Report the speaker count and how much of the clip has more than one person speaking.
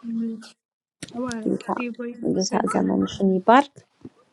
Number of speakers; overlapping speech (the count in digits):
2, about 23%